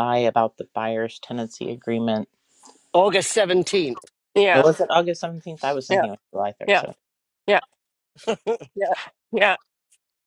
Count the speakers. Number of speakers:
three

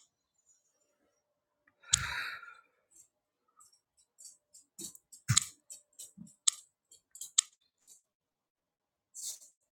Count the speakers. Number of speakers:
zero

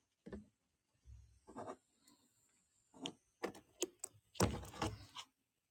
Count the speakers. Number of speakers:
zero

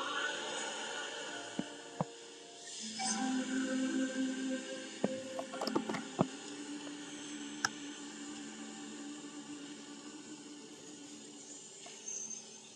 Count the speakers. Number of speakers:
zero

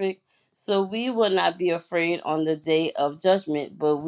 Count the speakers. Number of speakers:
one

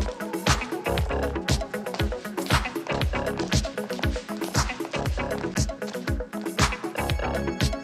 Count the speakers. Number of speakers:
zero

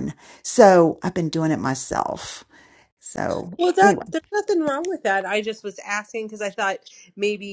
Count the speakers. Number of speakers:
two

